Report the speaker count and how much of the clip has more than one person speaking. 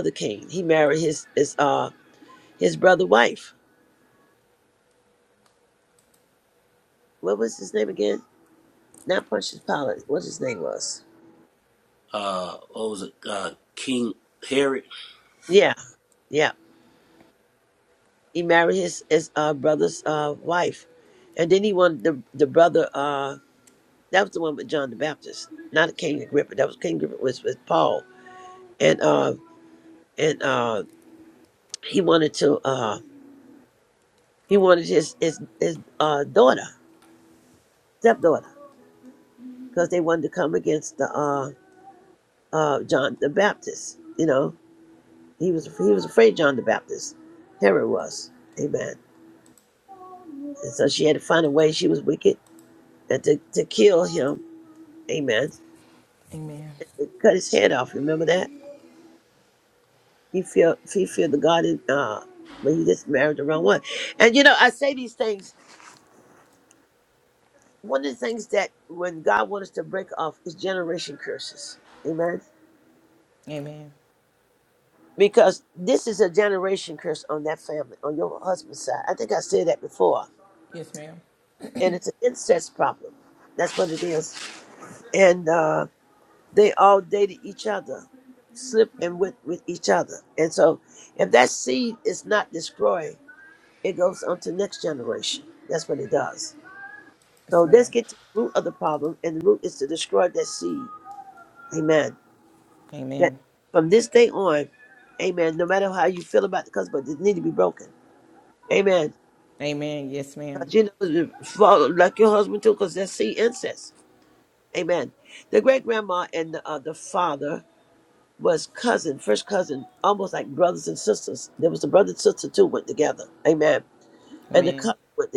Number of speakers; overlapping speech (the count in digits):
3, about 1%